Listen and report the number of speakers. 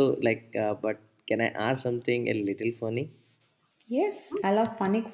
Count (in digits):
2